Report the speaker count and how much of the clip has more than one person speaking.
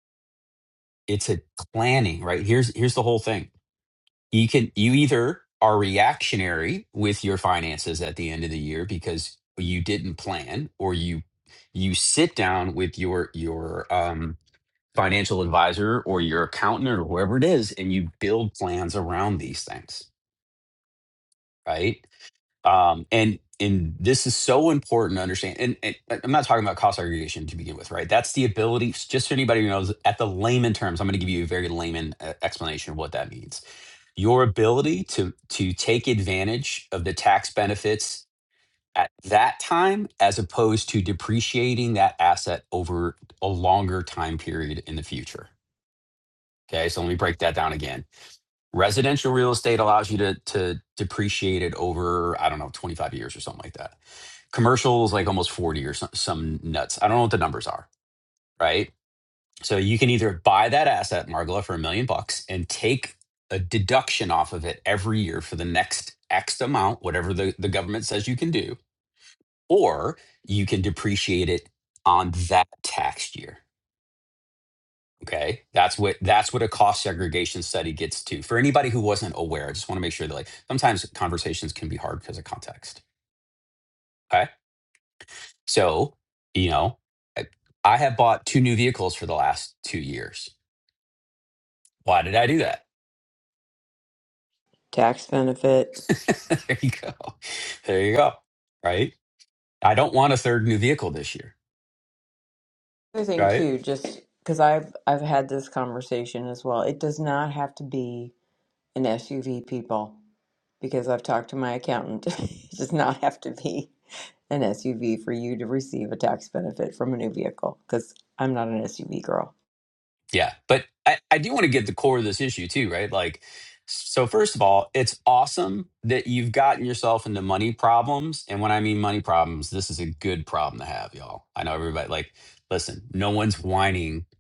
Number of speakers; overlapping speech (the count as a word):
two, under 1%